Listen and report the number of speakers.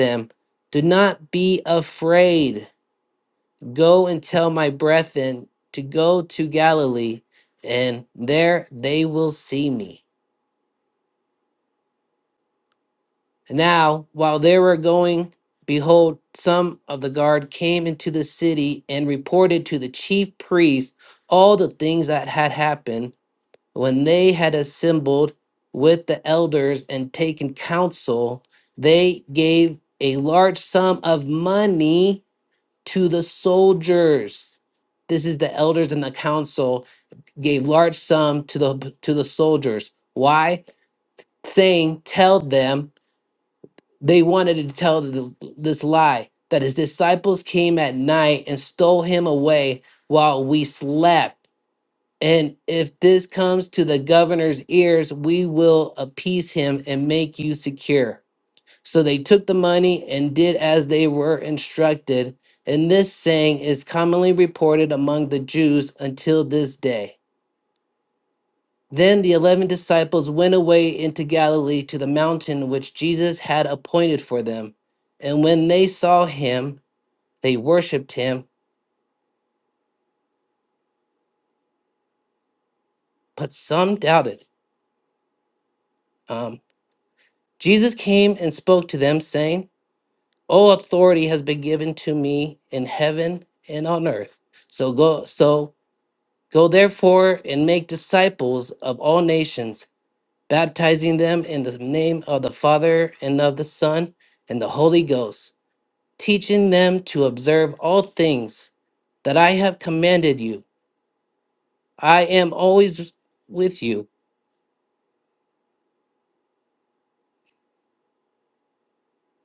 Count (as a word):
one